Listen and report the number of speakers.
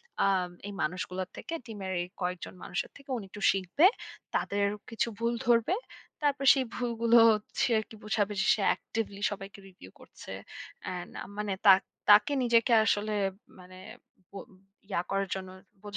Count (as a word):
one